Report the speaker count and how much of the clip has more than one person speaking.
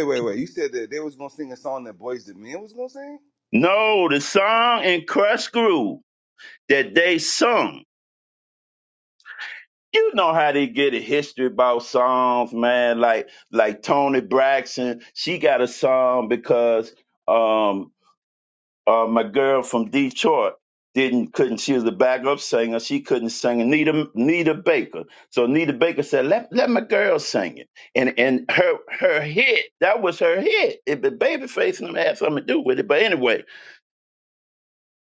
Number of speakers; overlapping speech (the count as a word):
two, no overlap